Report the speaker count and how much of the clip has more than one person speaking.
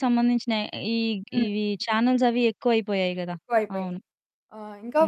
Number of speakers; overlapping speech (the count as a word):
two, about 9%